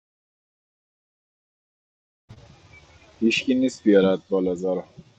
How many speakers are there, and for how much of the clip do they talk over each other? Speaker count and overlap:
one, no overlap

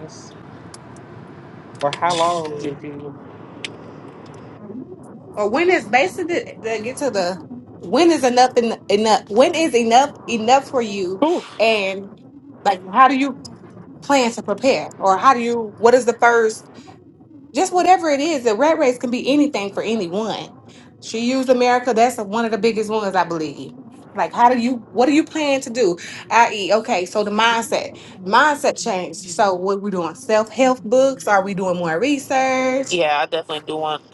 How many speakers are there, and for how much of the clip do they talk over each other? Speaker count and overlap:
three, about 1%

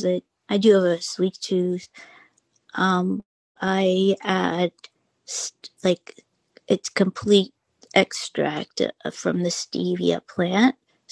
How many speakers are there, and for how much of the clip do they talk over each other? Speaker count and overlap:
one, no overlap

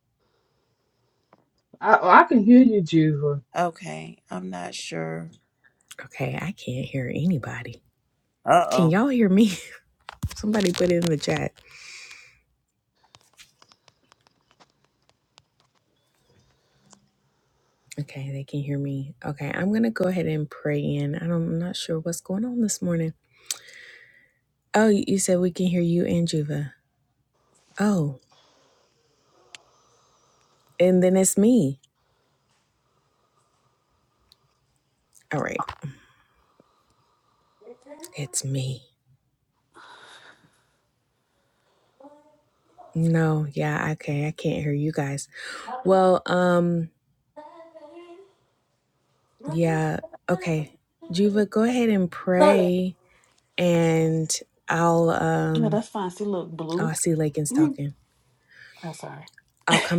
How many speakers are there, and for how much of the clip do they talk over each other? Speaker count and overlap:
four, about 2%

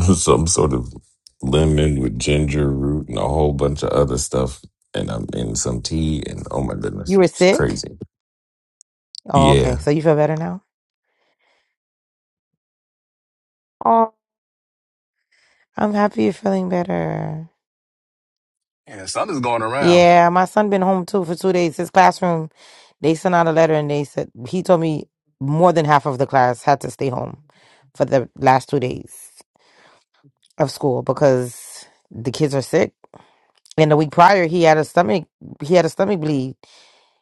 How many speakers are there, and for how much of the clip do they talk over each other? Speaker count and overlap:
three, about 3%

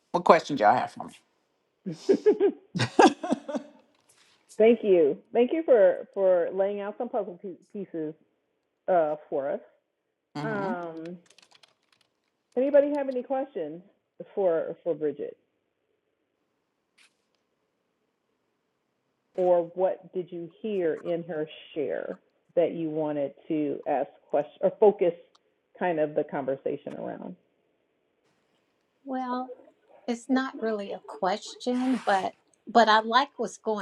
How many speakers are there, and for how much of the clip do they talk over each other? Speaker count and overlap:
three, about 1%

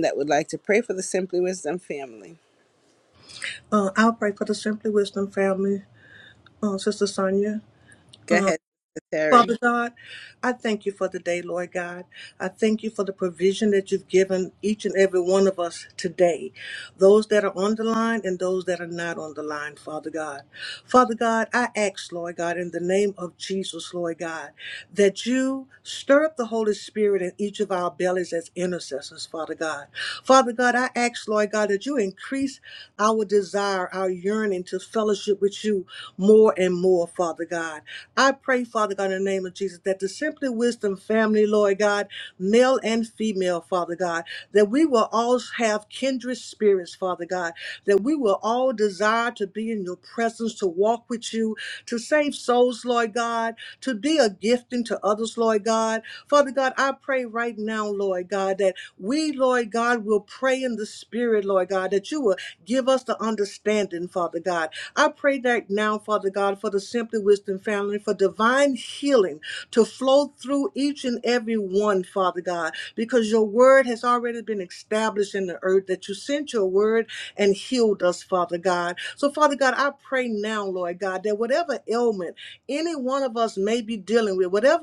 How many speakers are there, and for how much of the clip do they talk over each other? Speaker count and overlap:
two, under 1%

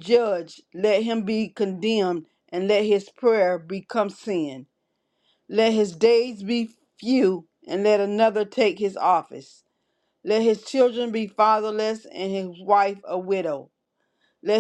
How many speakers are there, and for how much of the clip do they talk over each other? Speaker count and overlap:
one, no overlap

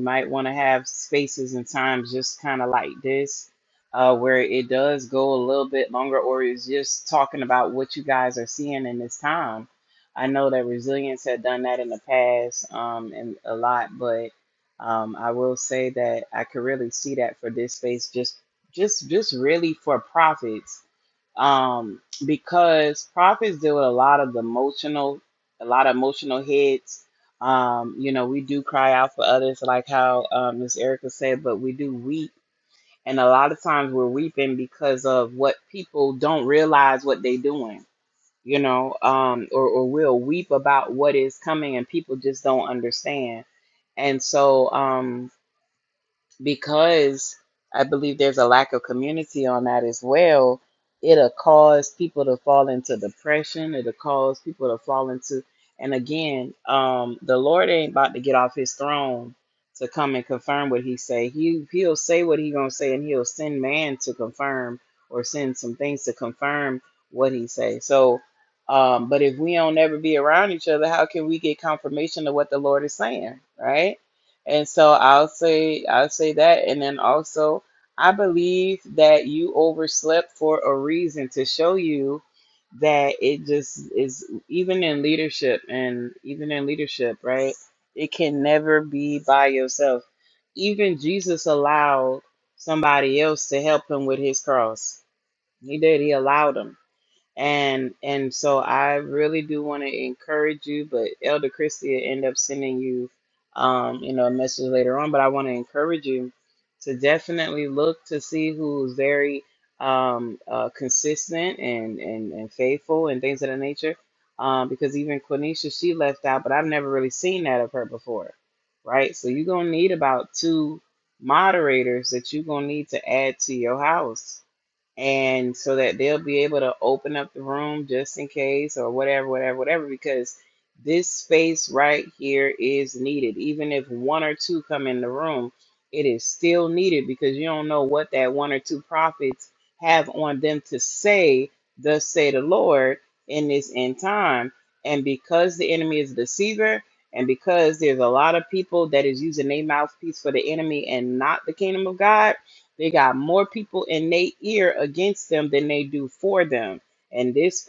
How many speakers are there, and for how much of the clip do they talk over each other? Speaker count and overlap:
one, no overlap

